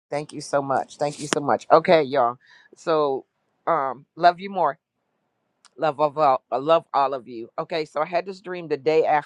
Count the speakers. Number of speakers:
1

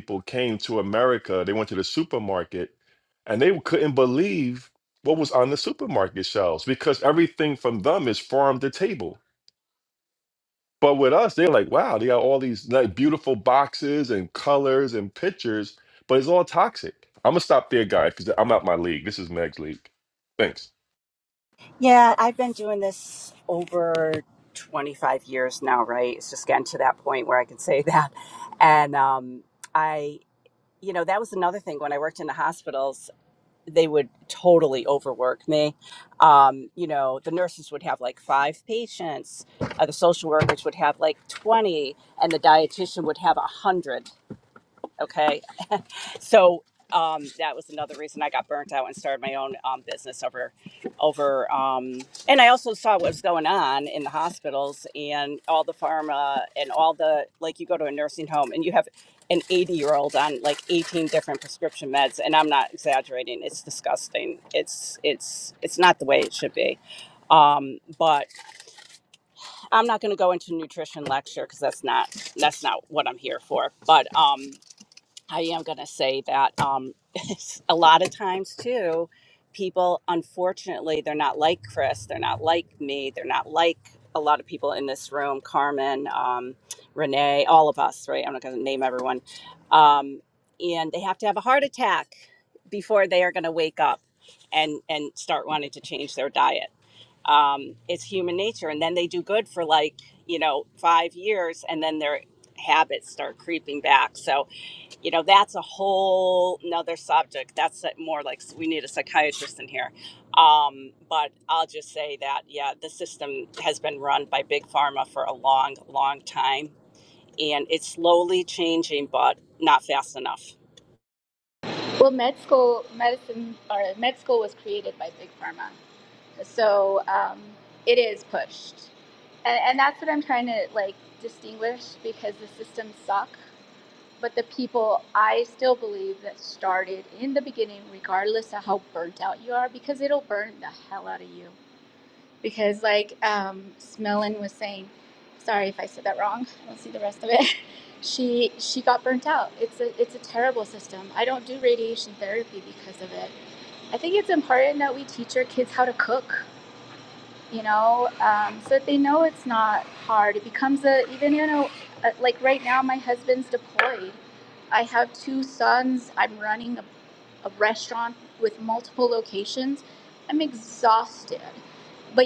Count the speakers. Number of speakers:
3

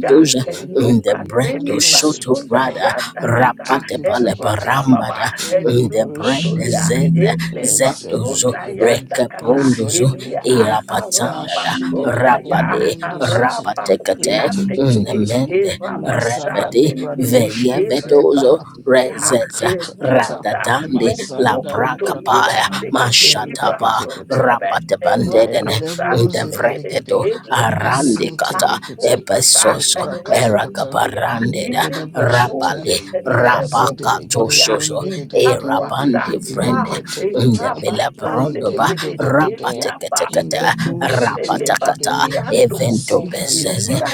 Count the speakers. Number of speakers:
3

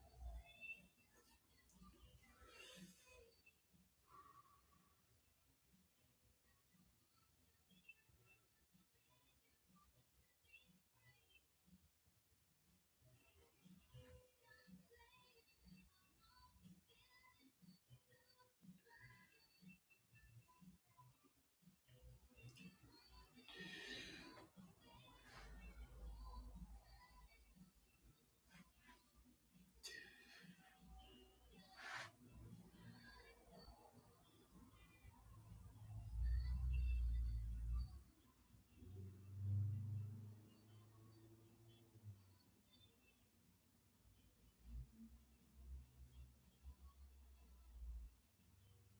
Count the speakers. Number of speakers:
0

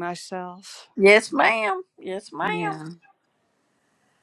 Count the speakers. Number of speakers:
2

